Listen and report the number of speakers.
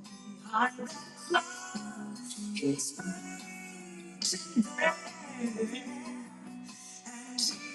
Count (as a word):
zero